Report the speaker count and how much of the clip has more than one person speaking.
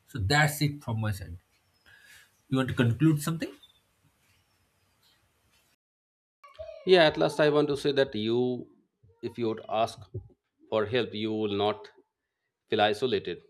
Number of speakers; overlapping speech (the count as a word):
two, no overlap